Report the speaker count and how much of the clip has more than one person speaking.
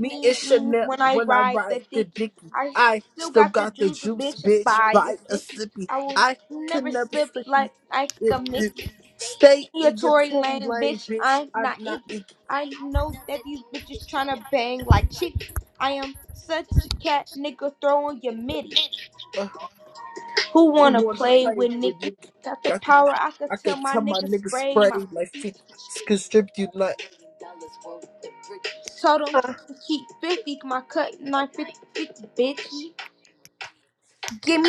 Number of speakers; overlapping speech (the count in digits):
2, about 40%